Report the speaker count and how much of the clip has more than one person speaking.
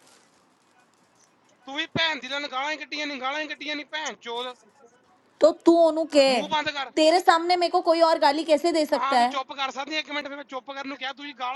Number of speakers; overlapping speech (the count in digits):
2, about 4%